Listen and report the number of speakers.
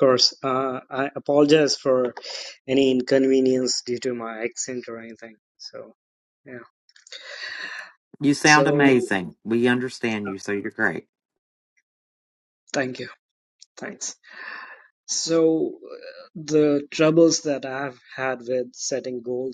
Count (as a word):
two